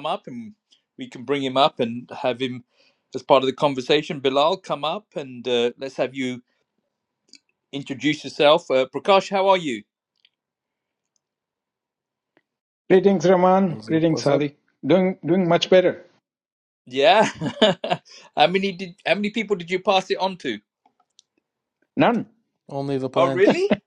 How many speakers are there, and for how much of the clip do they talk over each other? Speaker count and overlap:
three, about 4%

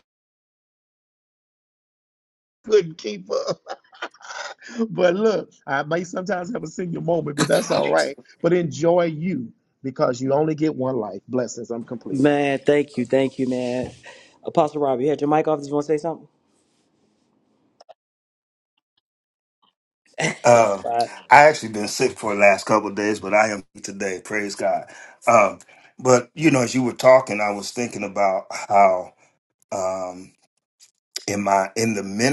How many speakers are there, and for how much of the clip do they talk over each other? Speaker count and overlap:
three, about 1%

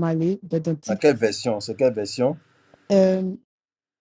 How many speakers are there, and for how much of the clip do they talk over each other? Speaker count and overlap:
two, about 2%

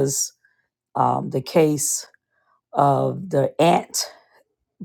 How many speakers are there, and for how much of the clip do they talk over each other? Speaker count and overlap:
one, no overlap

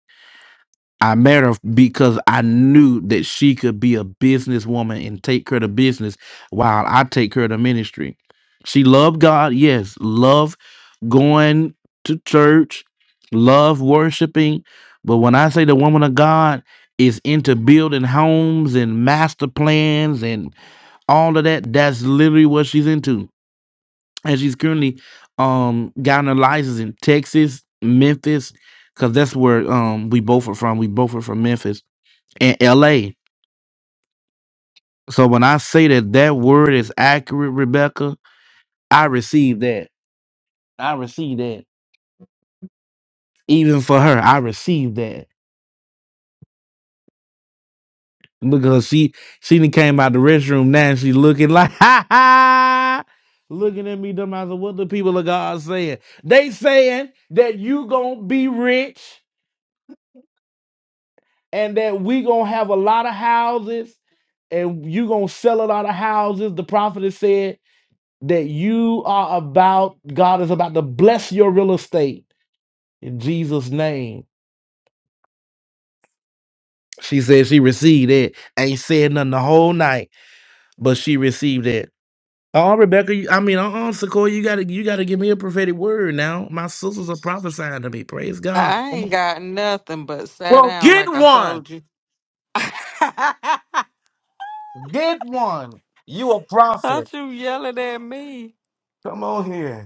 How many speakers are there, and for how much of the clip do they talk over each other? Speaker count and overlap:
two, about 2%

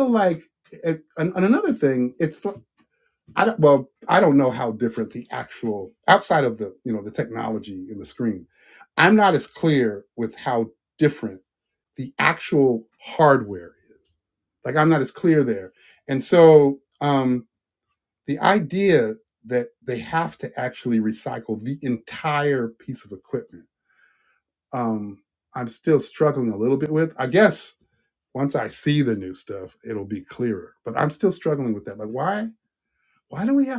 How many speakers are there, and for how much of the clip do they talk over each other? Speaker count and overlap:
one, no overlap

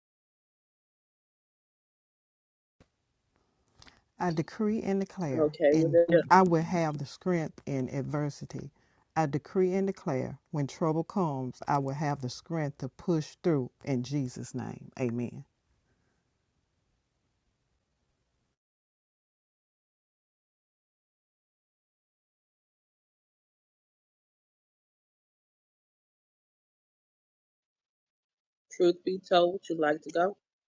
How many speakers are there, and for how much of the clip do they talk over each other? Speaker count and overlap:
two, about 2%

